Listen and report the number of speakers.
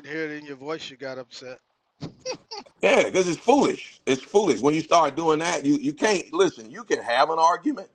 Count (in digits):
2